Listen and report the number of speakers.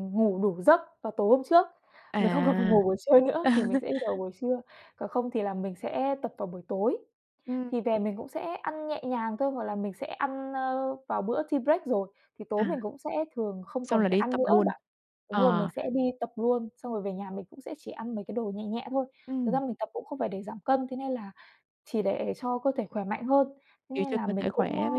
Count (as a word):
two